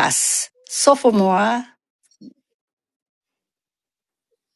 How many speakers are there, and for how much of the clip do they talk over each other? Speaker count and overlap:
one, no overlap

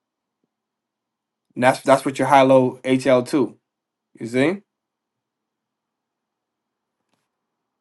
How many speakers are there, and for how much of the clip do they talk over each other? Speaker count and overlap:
one, no overlap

